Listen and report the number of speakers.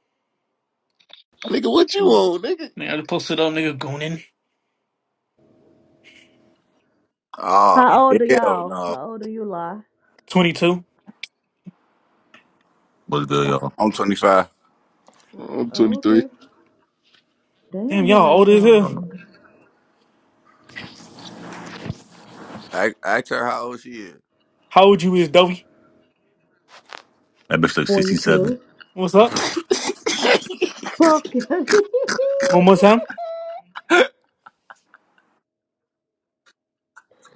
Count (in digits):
5